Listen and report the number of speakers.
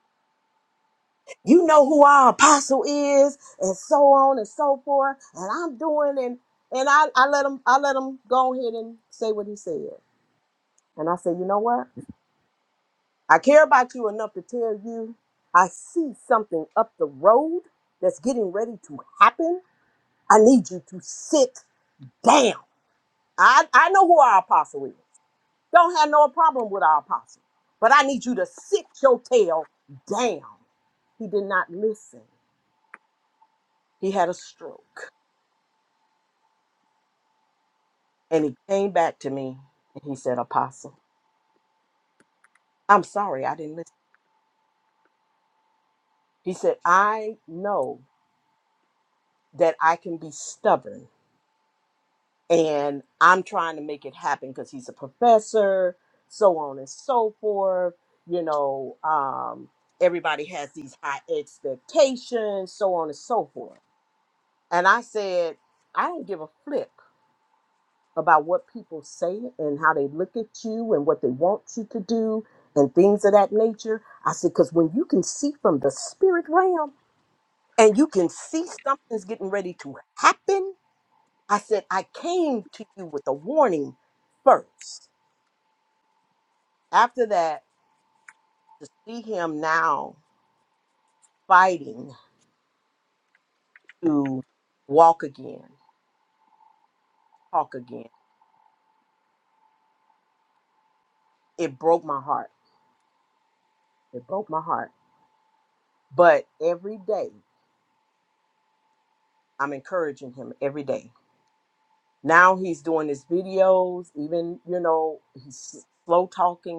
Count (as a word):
one